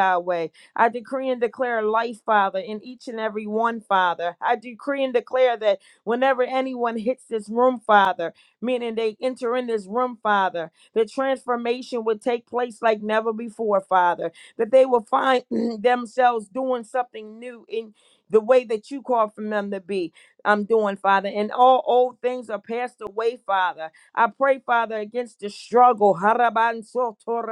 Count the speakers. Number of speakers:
1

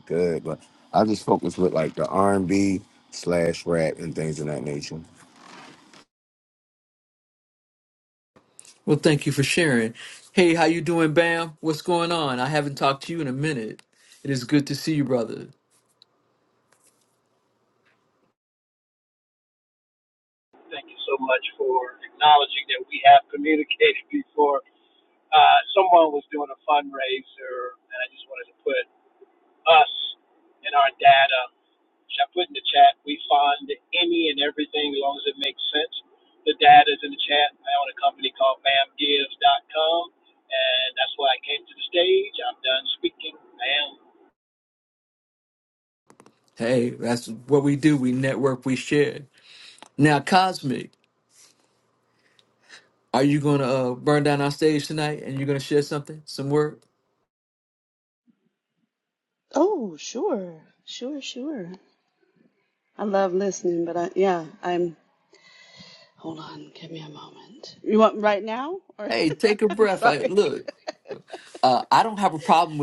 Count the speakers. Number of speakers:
4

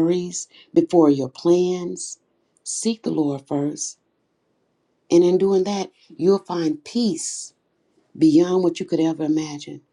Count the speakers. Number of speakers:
1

